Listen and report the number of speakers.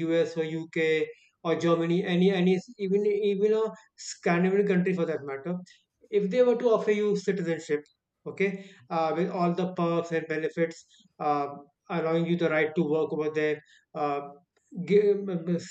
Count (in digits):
1